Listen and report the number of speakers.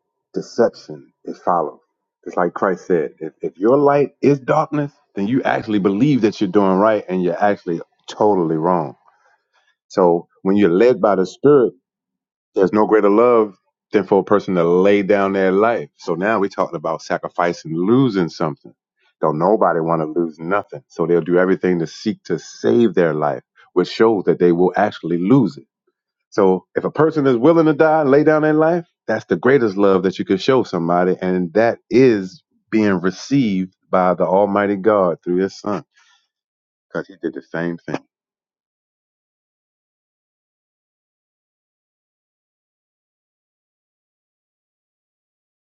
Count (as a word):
one